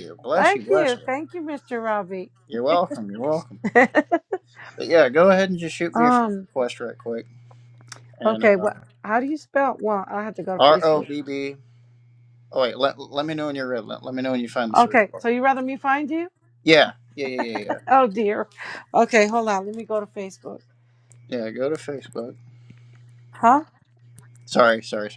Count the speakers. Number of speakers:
two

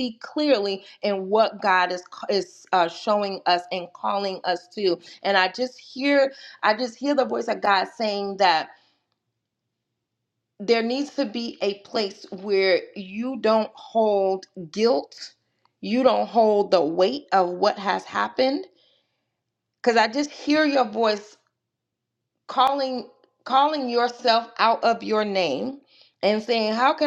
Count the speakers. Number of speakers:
one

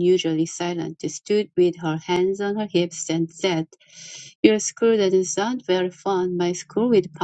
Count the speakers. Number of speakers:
one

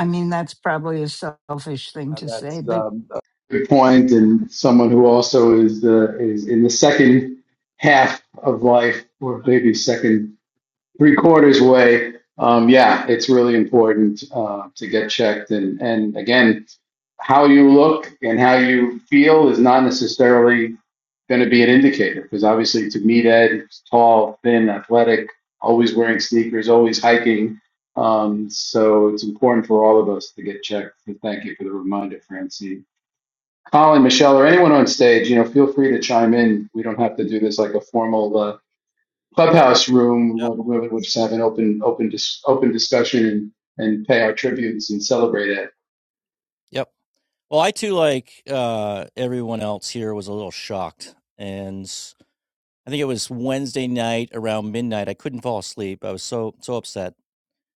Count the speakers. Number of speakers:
three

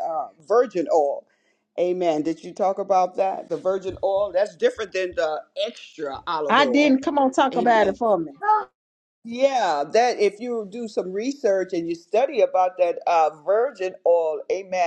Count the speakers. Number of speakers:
two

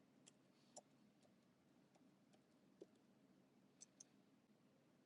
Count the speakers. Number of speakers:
zero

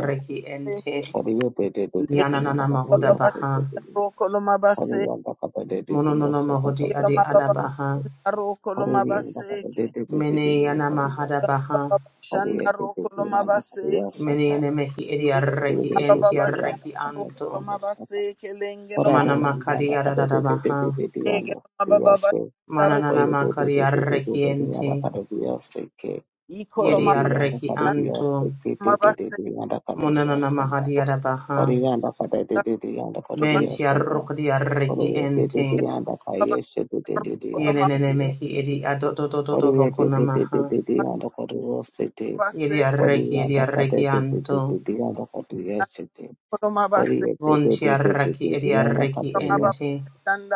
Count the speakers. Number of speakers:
three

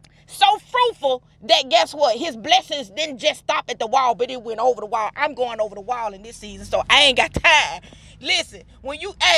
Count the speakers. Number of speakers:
one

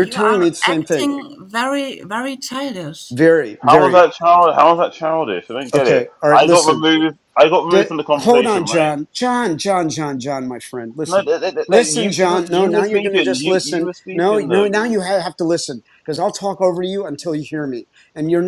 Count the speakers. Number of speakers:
three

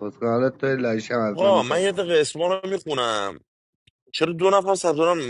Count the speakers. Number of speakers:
two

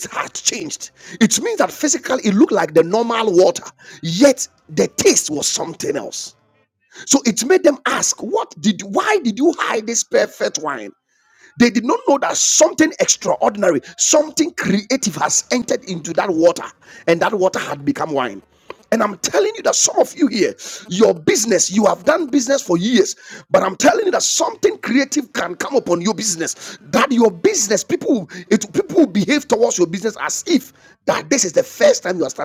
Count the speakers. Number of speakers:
one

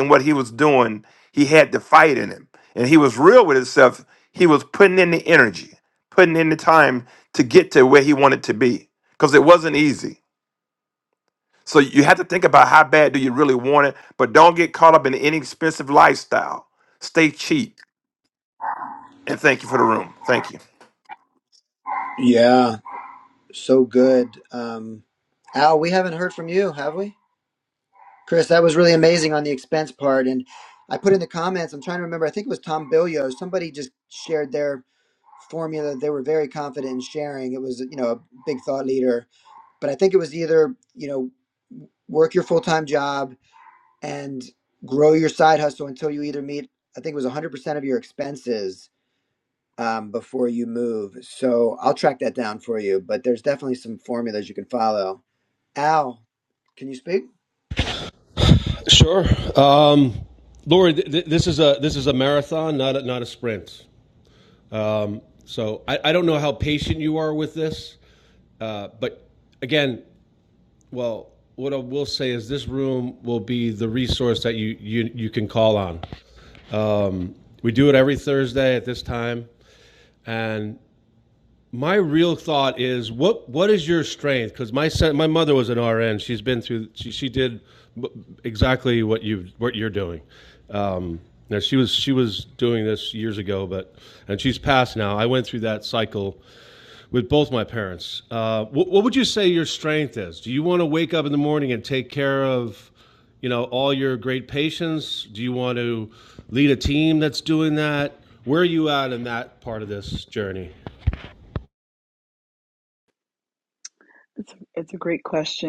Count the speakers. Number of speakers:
four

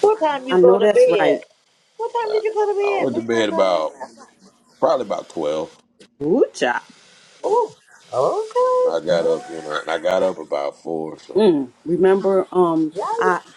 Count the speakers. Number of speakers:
three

